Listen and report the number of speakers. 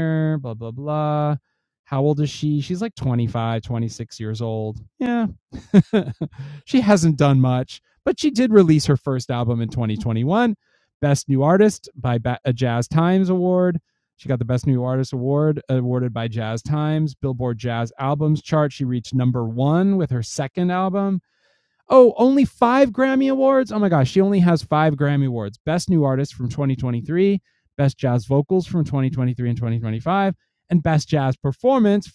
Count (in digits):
1